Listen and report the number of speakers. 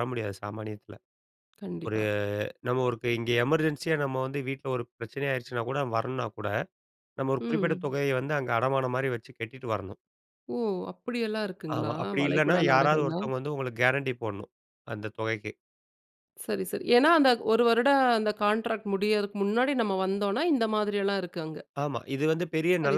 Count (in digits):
2